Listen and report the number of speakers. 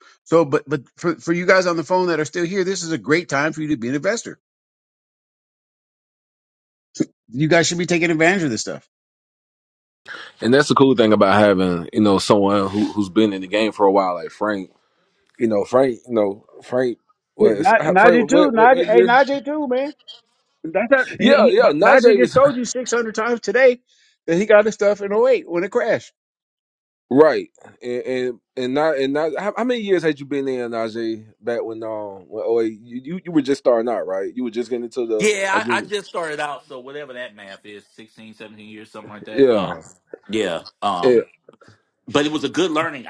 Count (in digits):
3